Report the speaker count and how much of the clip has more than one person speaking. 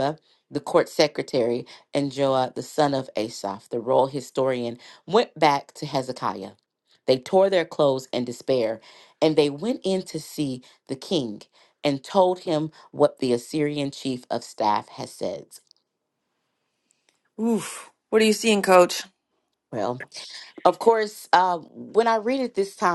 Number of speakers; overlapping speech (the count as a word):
two, no overlap